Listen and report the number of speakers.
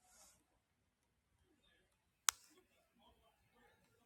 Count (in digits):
0